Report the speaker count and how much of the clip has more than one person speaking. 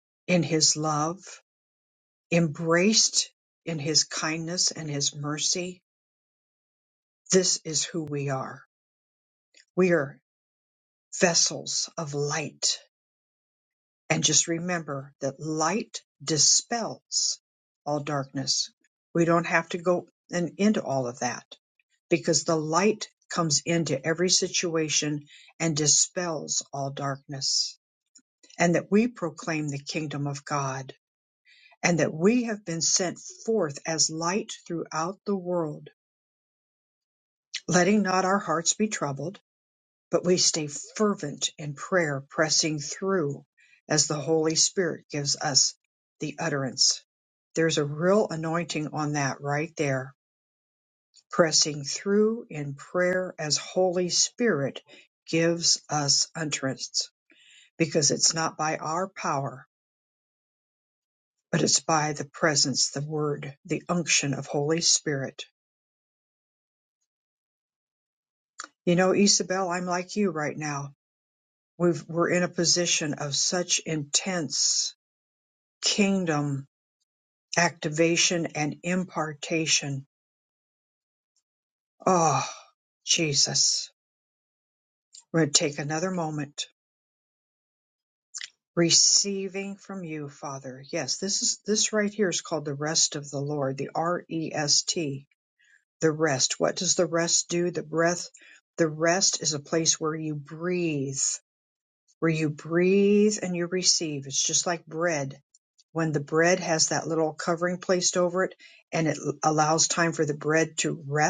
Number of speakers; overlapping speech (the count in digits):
1, no overlap